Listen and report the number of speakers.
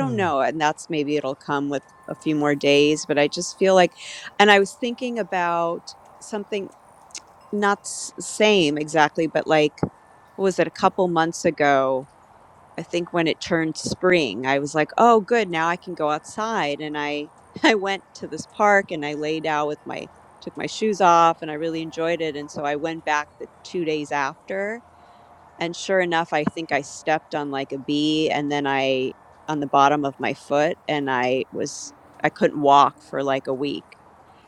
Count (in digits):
1